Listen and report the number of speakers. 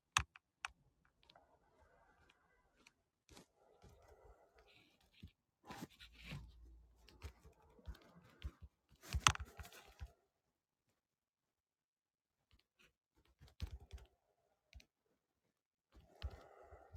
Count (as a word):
zero